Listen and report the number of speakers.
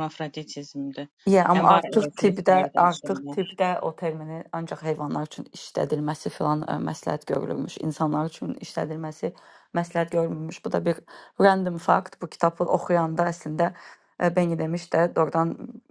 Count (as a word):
two